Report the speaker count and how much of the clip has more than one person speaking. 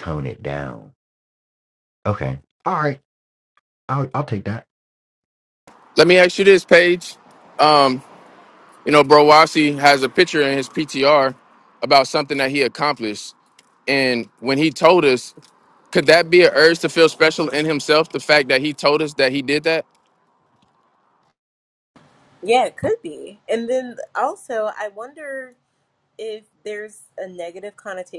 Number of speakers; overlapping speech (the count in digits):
3, no overlap